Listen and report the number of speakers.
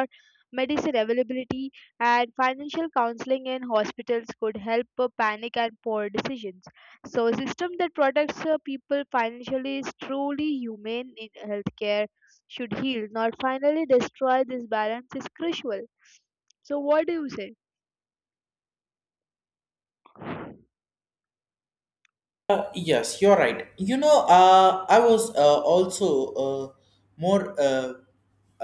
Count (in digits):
2